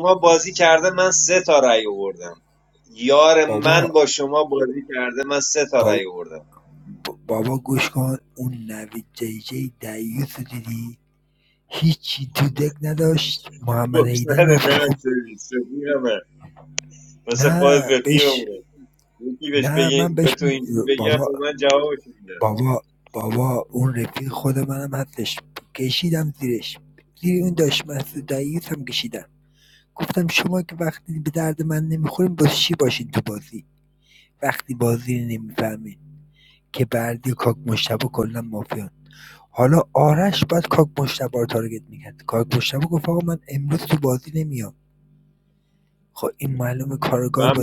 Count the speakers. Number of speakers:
2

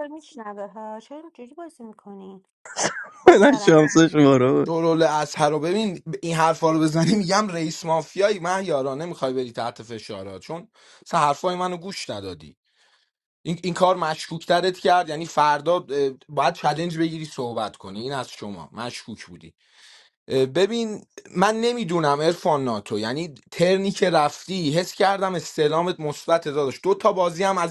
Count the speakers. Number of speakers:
3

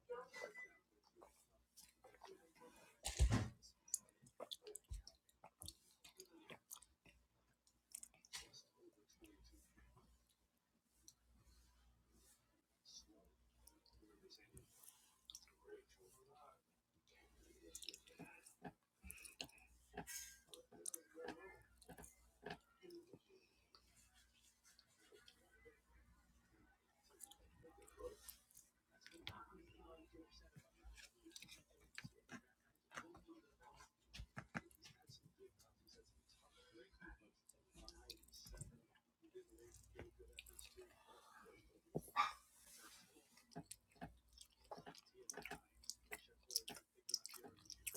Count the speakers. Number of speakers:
0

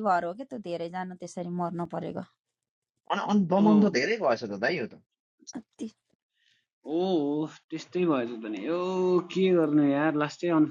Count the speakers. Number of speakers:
3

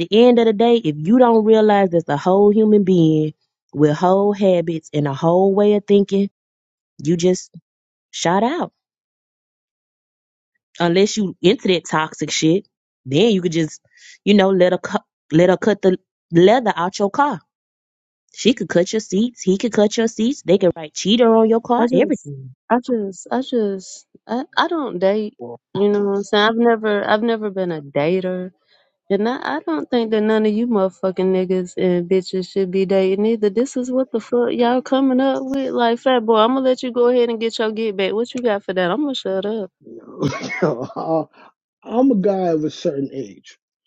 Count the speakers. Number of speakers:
3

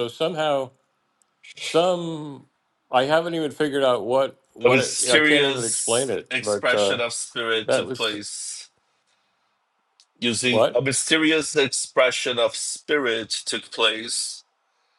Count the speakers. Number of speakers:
2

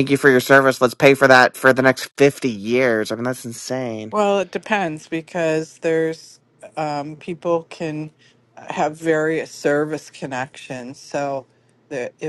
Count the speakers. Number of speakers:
2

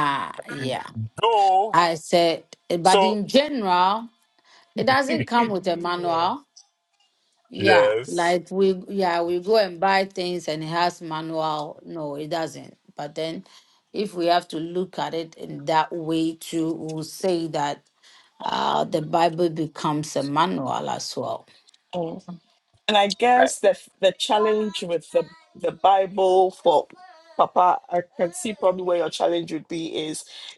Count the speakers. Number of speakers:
3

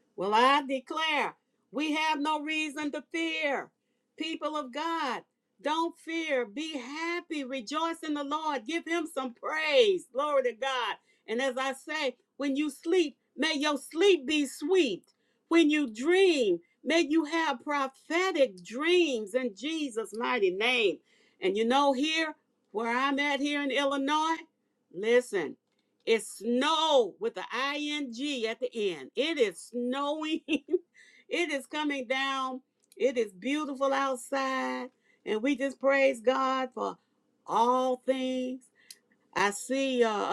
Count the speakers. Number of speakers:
1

